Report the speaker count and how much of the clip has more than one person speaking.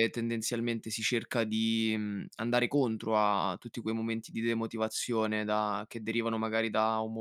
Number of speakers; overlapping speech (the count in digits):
1, no overlap